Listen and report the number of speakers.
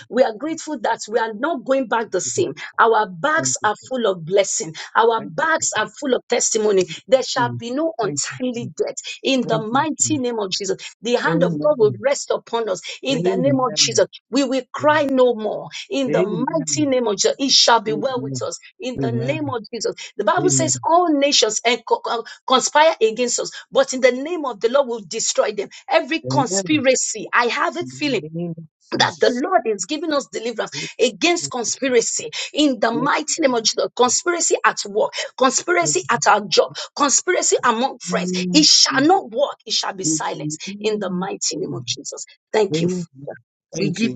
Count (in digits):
2